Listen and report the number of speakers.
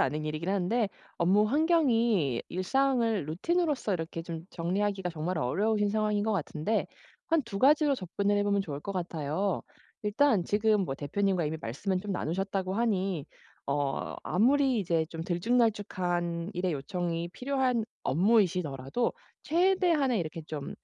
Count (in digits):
1